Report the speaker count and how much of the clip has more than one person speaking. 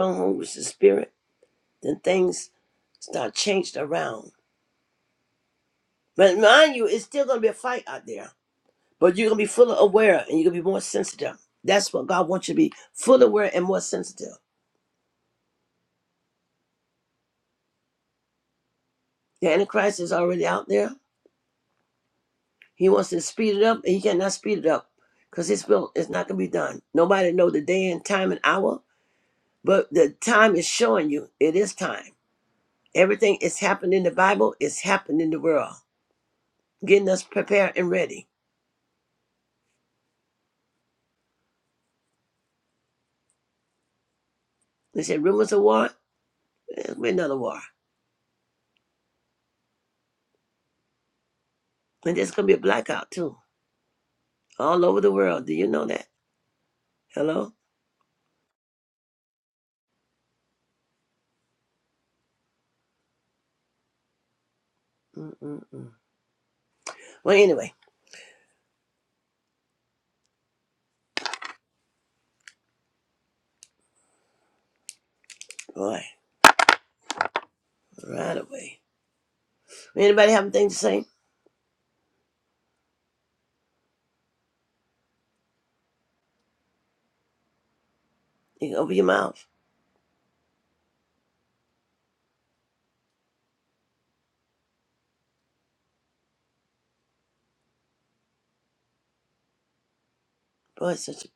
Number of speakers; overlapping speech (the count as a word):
one, no overlap